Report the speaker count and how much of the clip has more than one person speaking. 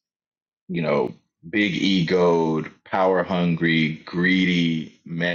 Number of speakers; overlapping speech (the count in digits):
1, no overlap